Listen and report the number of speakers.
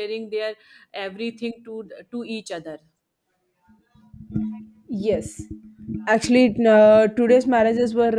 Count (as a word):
two